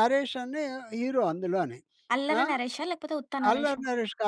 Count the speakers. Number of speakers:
2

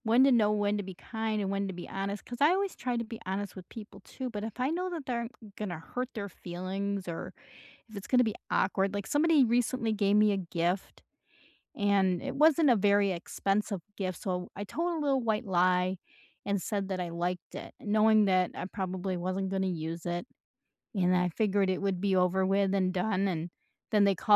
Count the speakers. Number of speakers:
1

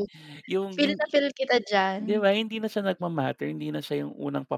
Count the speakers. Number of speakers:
2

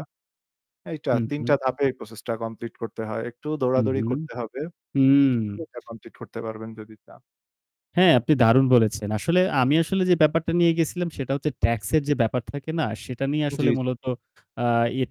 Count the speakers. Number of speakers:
2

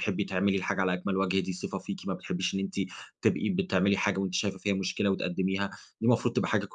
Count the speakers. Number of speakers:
1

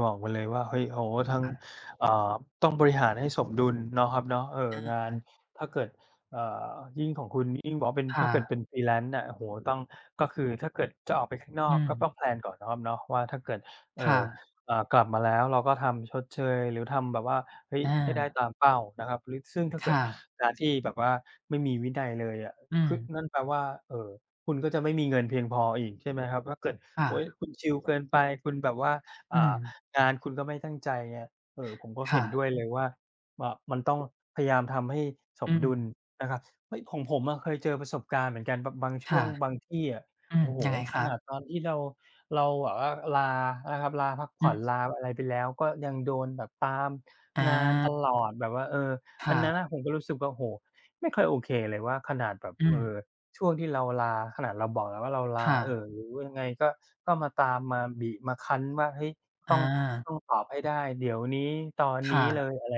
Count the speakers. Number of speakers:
2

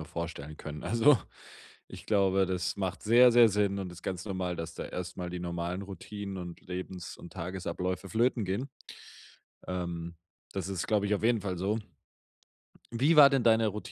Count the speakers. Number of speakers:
1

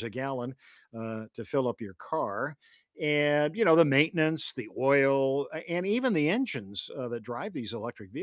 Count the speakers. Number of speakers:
1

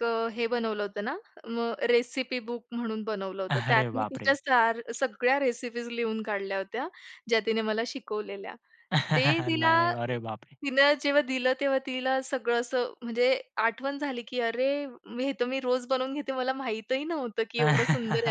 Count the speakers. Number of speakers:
2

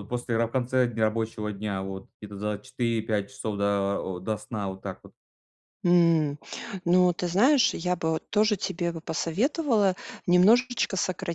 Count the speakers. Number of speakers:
2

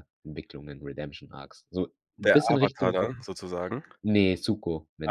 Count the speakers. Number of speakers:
2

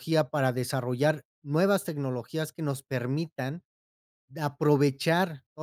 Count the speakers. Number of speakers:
1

